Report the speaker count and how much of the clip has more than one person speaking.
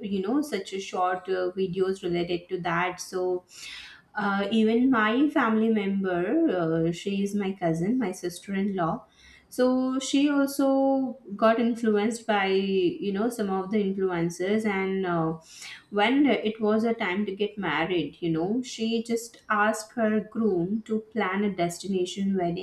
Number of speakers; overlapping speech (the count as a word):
one, no overlap